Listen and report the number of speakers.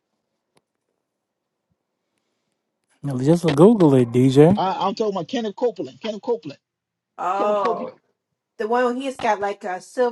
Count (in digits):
3